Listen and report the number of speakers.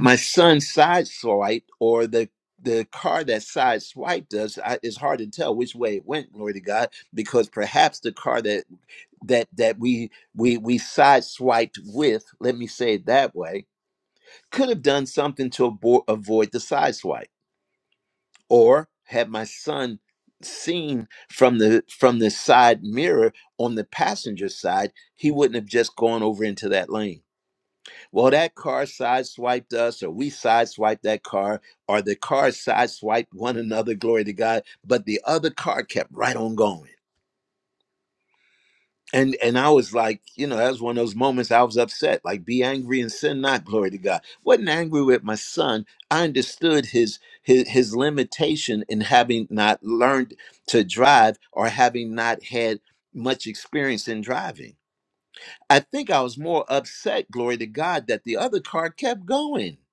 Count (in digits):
1